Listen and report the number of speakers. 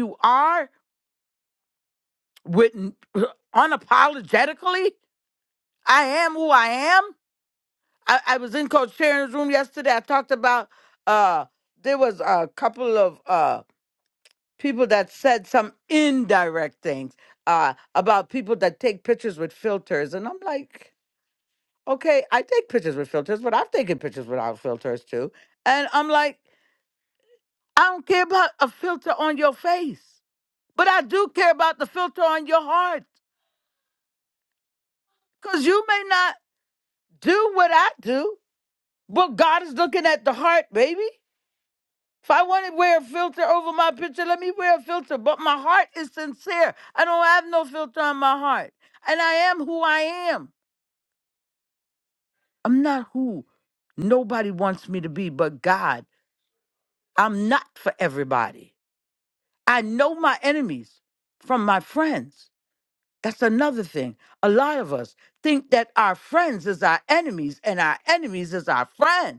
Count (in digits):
1